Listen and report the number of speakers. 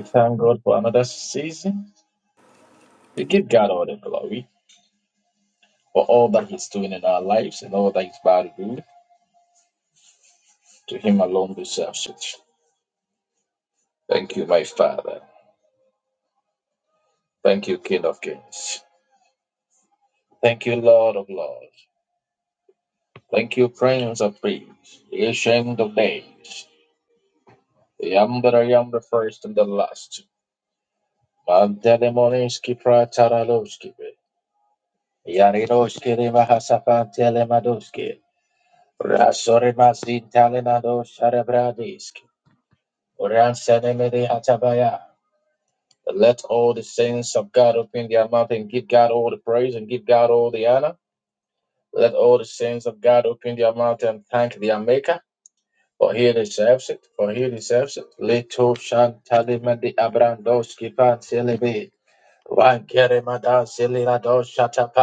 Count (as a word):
one